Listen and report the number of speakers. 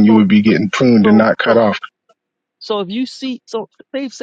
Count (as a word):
two